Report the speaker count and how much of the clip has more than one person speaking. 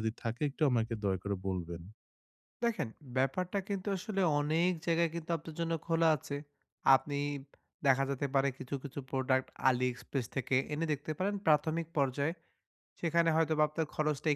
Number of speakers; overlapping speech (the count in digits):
2, no overlap